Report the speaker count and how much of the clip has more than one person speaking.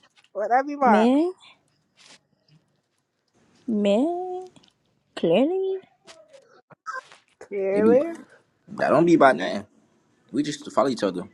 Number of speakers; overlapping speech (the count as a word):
three, about 6%